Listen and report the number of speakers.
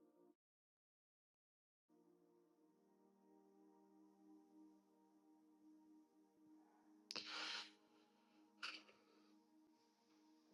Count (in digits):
0